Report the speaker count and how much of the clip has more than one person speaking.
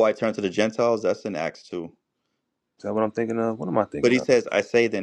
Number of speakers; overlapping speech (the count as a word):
two, about 4%